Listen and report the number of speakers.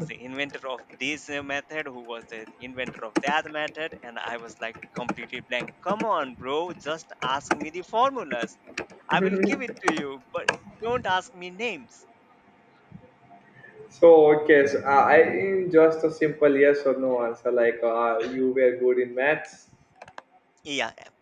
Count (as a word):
two